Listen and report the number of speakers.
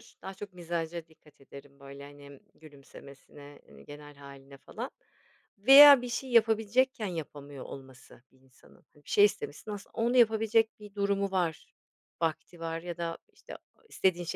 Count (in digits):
1